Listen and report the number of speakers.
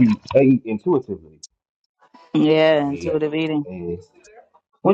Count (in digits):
2